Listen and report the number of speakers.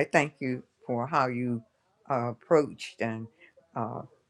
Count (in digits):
1